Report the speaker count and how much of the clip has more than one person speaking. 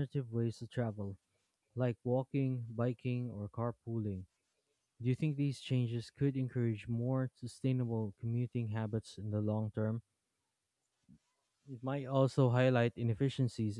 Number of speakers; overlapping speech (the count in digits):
1, no overlap